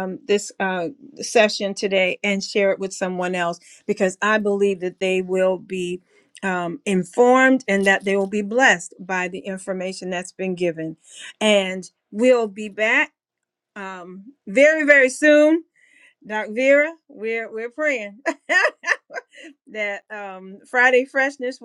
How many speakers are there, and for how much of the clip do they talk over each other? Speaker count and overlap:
1, no overlap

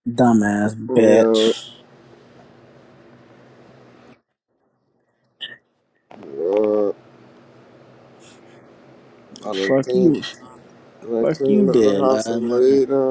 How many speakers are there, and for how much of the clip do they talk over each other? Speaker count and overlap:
2, about 23%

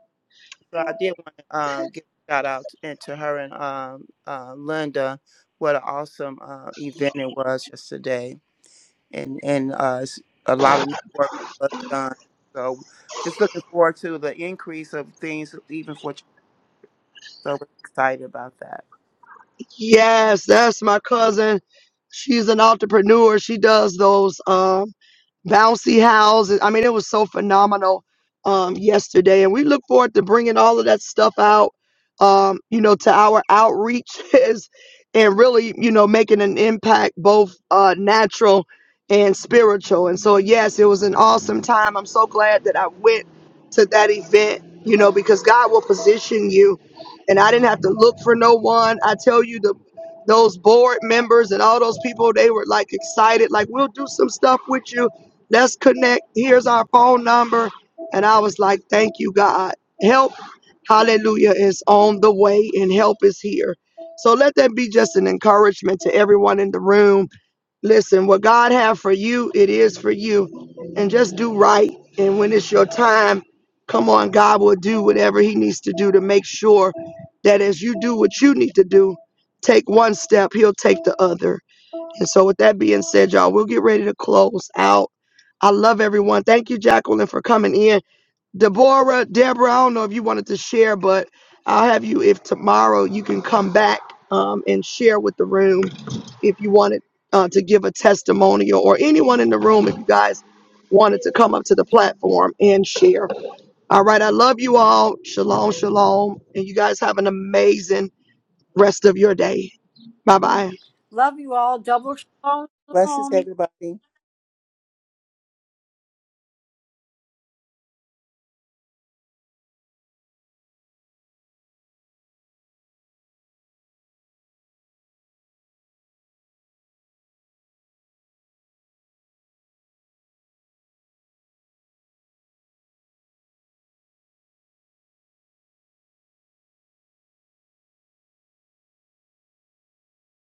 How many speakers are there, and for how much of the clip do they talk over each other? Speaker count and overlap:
3, under 1%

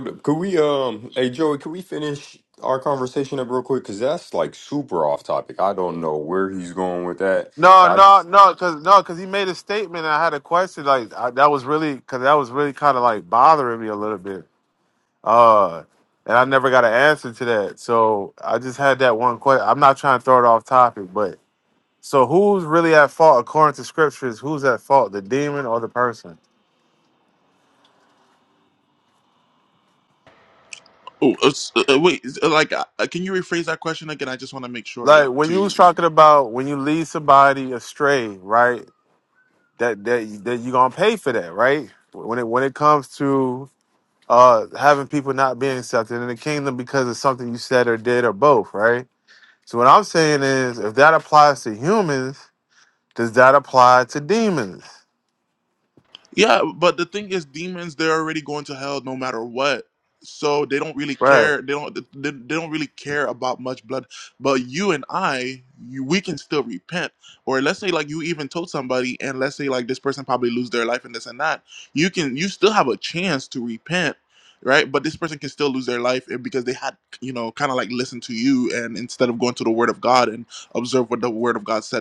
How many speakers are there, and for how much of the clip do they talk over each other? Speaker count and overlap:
3, about 2%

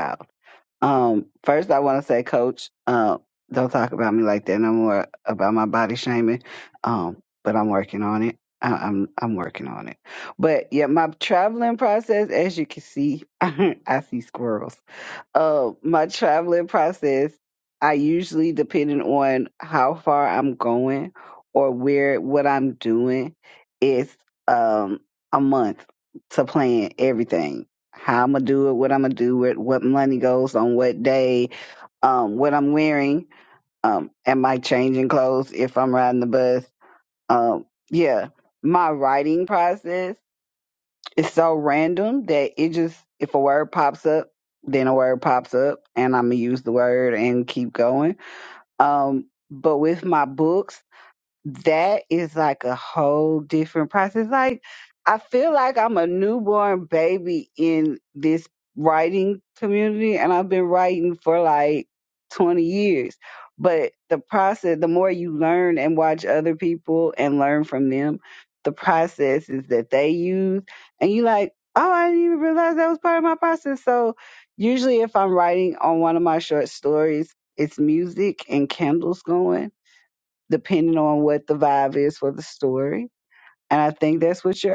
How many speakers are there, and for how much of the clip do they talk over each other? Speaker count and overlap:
1, no overlap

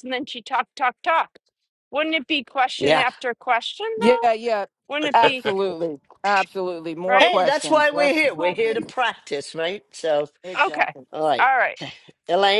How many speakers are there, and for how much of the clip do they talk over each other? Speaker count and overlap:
3, about 20%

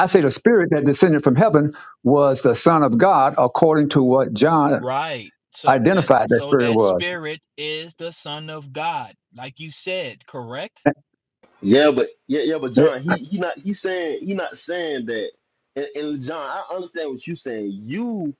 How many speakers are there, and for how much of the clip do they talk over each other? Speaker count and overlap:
3, about 8%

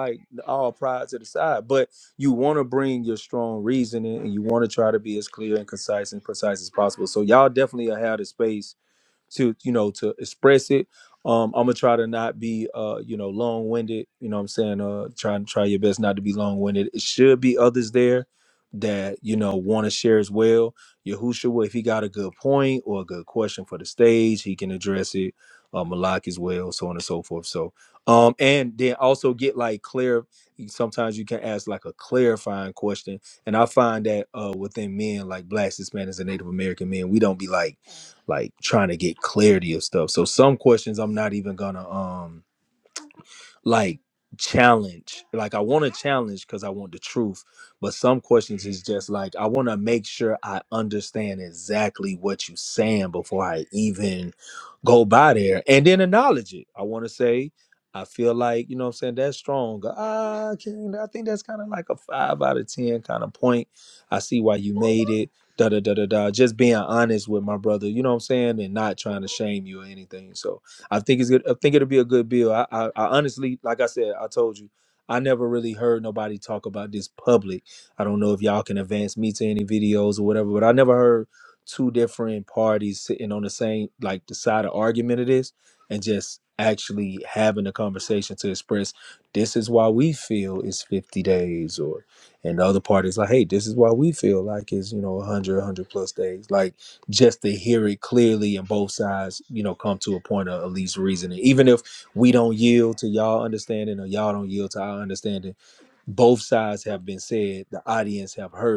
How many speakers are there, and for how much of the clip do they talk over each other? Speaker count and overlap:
1, no overlap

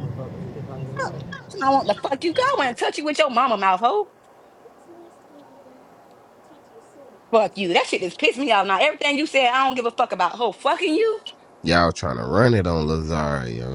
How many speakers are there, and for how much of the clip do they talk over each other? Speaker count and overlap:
3, no overlap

